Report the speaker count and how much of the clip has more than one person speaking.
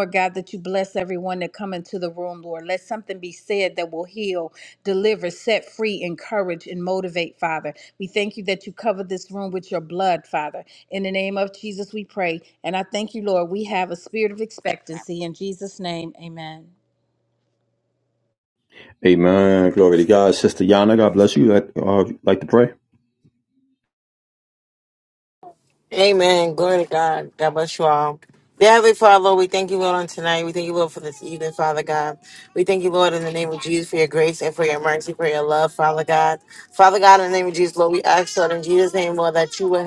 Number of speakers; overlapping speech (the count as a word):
three, no overlap